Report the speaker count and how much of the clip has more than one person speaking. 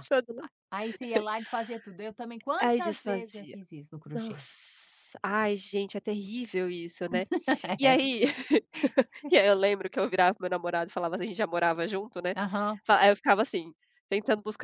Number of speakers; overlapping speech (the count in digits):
2, about 10%